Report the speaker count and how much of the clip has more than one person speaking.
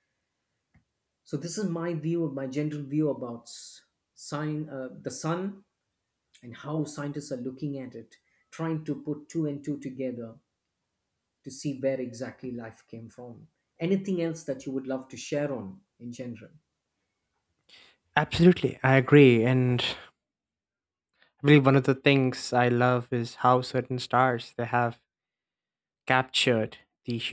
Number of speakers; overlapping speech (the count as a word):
two, no overlap